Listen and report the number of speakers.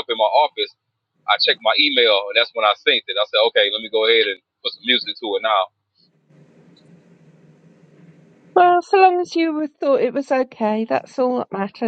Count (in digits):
2